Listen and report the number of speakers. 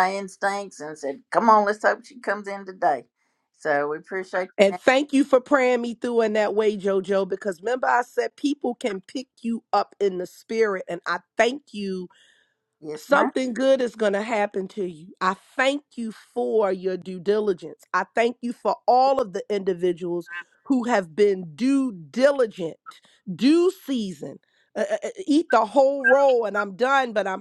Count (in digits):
2